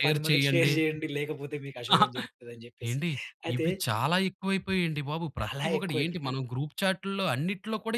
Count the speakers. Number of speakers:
two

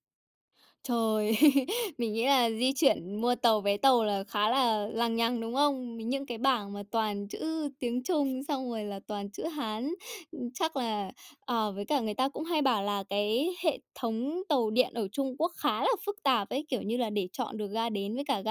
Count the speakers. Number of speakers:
one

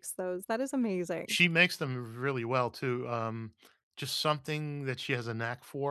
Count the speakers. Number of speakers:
two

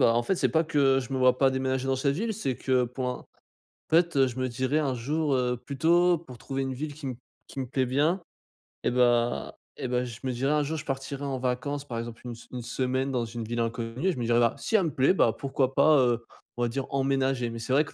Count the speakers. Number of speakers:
one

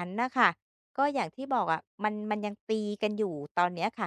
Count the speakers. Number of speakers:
one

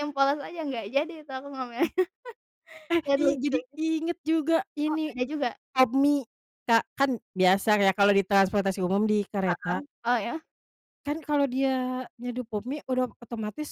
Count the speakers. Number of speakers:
two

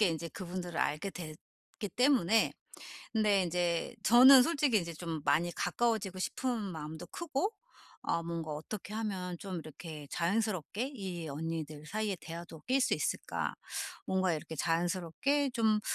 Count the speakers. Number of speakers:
one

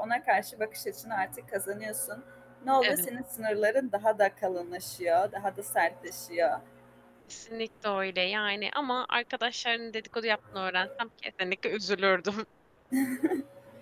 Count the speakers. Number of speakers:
two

